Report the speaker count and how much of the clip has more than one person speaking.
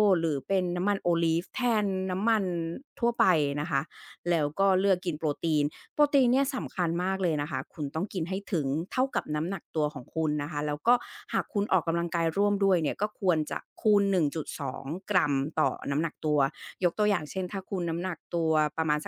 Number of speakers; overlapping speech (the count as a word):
one, no overlap